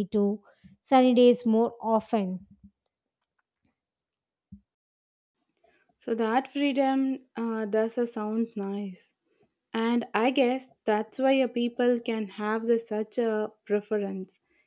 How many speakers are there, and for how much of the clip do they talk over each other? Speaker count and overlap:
2, no overlap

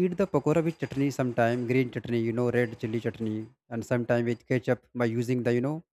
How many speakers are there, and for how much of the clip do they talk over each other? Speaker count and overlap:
1, no overlap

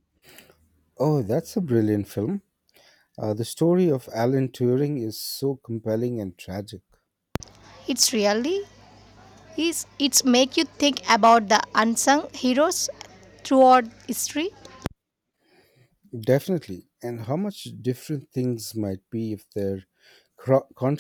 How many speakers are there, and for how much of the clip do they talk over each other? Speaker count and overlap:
2, no overlap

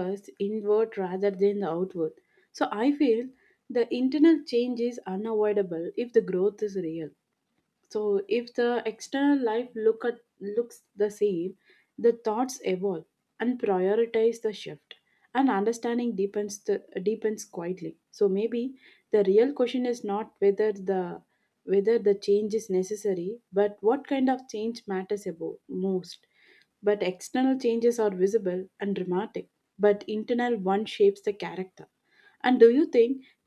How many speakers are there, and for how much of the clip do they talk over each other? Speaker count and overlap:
1, no overlap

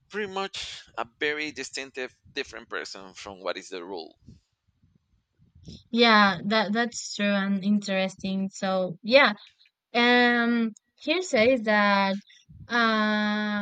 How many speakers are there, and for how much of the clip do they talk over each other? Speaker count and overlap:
2, no overlap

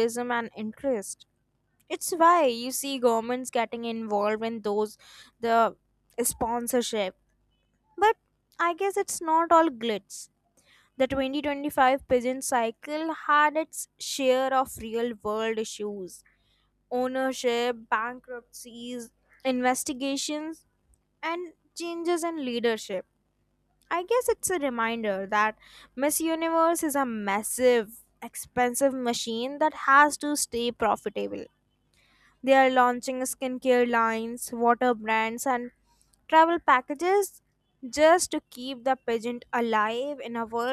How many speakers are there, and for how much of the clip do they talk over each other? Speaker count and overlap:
1, no overlap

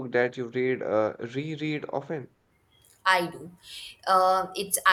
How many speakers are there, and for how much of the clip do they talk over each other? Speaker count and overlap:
2, no overlap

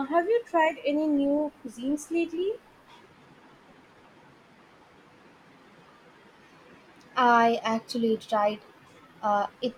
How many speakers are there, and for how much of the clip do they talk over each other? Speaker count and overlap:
2, no overlap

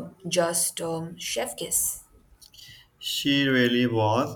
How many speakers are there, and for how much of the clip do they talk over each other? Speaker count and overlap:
2, no overlap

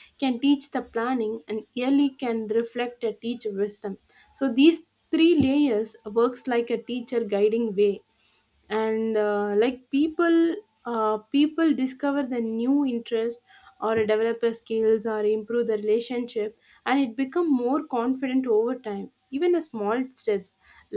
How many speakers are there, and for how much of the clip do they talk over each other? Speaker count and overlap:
1, no overlap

